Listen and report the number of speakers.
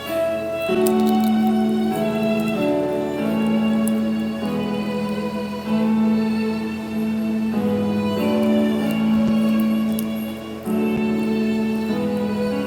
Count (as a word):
zero